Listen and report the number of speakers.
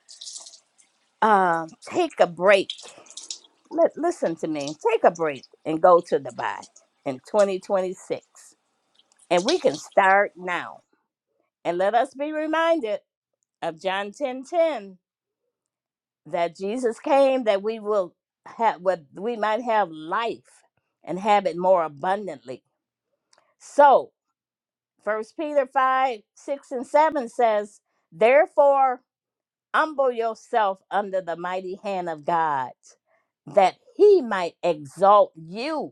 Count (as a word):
one